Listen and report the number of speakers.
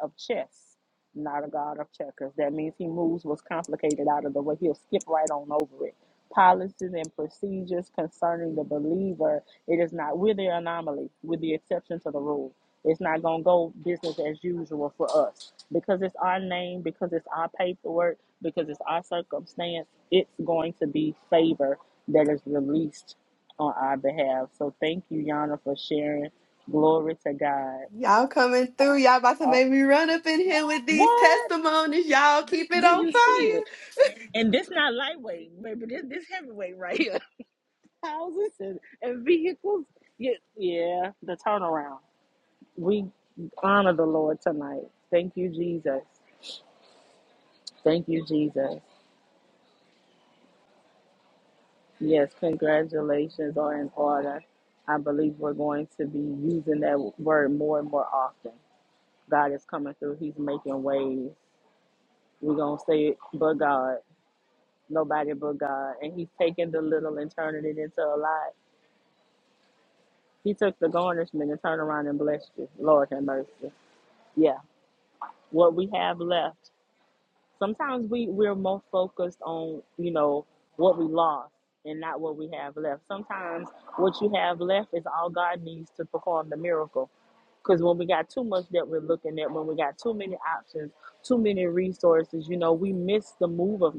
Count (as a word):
two